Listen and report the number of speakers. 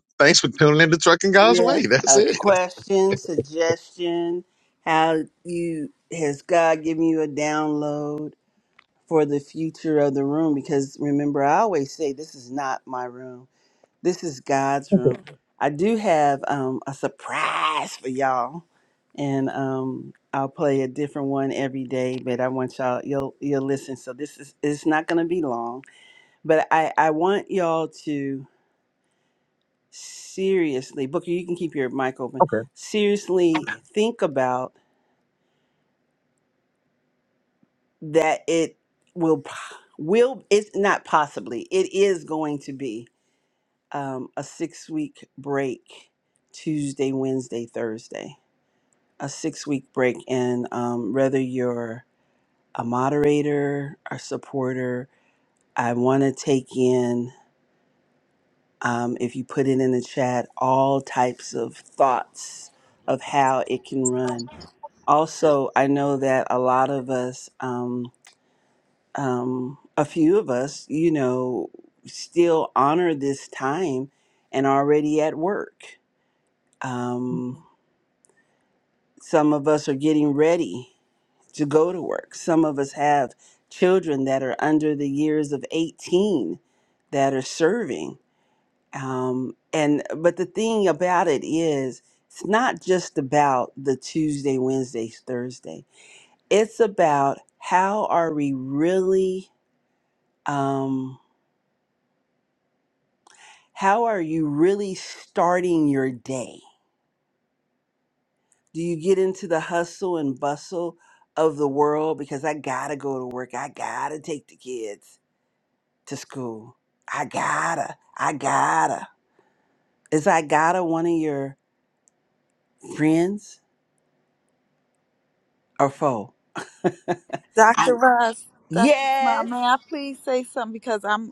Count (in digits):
3